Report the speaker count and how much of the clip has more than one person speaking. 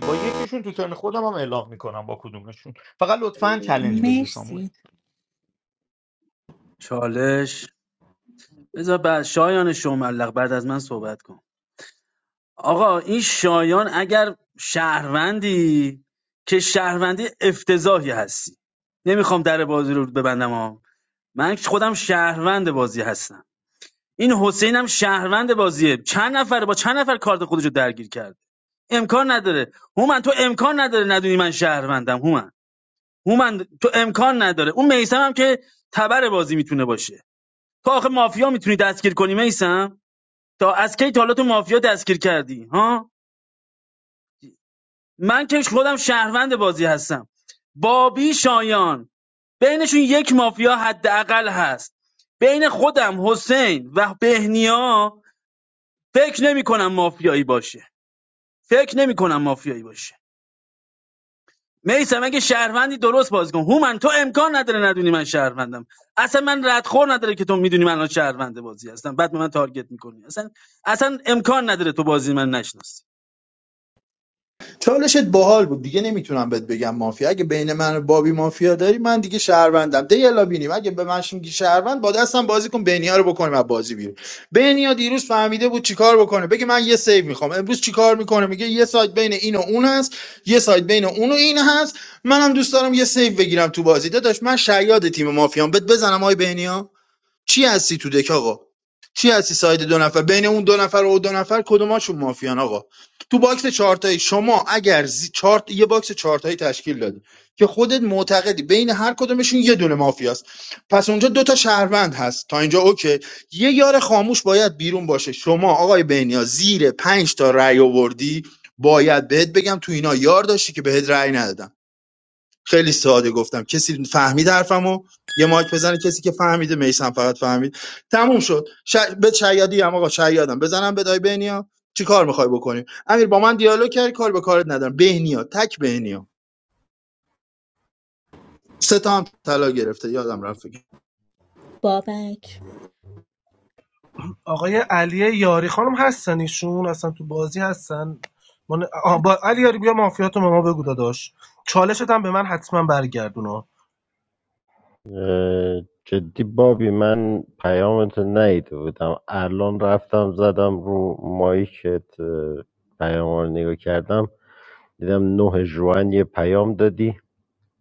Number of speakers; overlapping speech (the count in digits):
6, under 1%